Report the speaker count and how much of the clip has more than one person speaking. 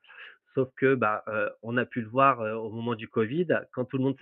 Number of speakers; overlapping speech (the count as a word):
one, no overlap